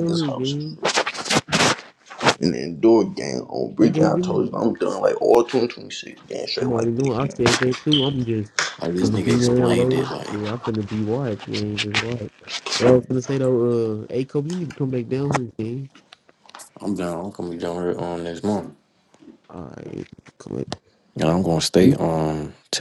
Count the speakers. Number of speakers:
3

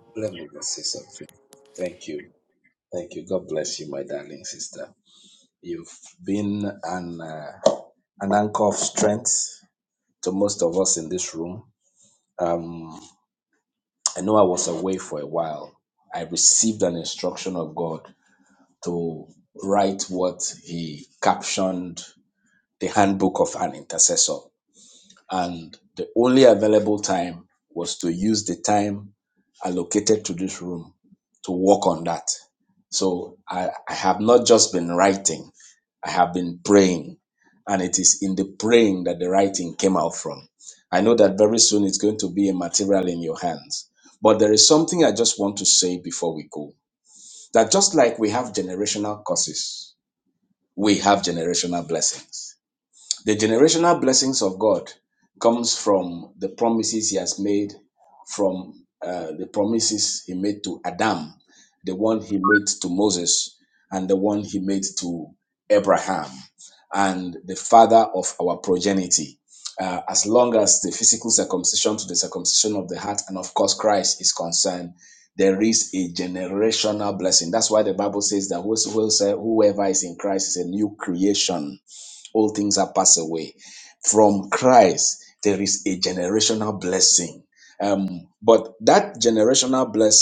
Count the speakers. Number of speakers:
1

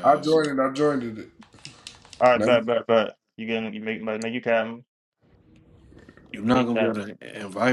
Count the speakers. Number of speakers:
3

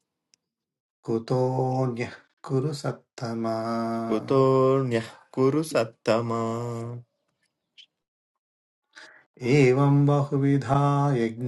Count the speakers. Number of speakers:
2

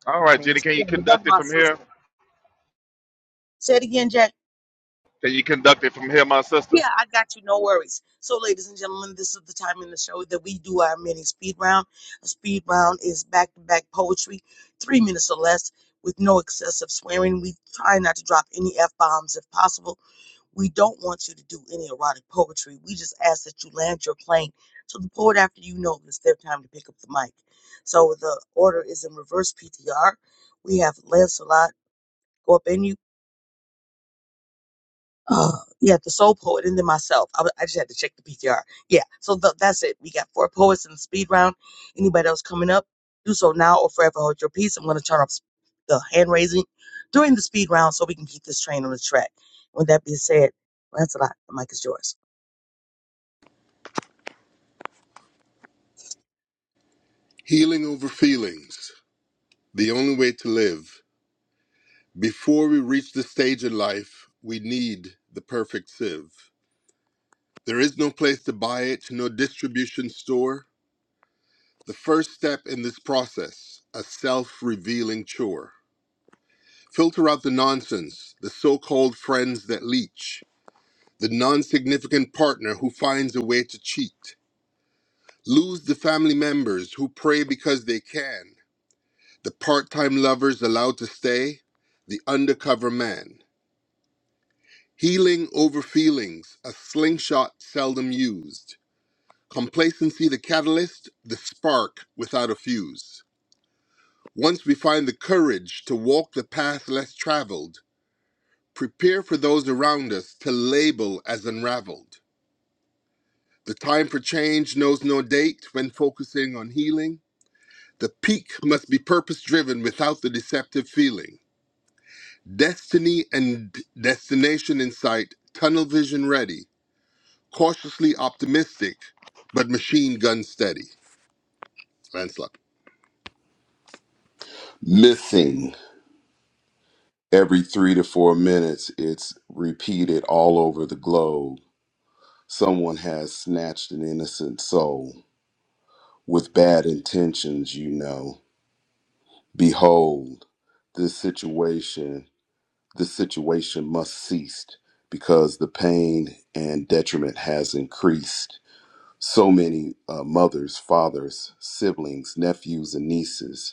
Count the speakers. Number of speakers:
4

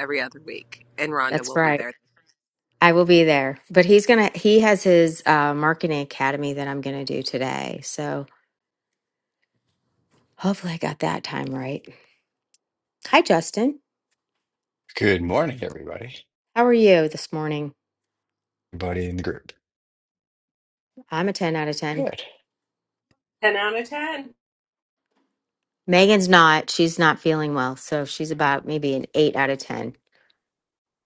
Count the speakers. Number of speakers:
3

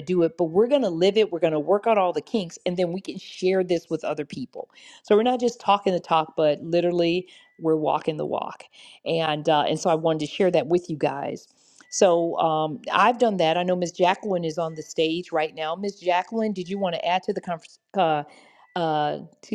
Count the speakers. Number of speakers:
1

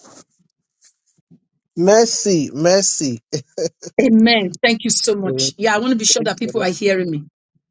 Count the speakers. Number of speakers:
2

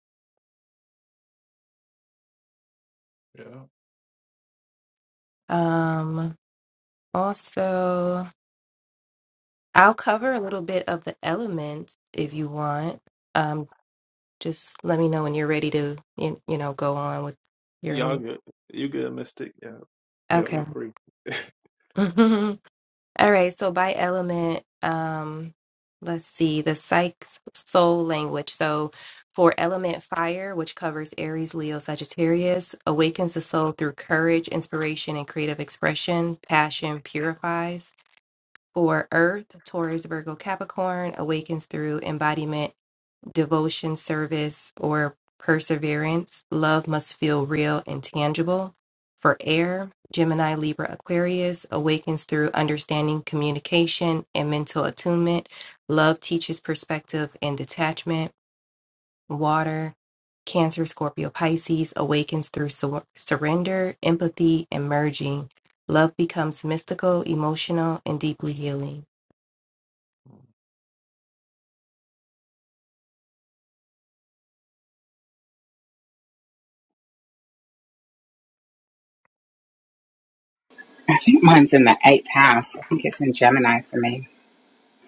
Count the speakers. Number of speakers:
3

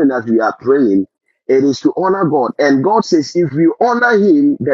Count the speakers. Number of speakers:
1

